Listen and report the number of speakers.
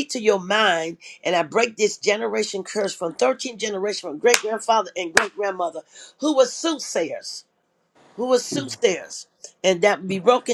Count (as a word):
one